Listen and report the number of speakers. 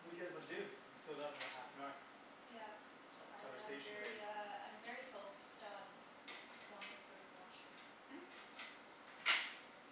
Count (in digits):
2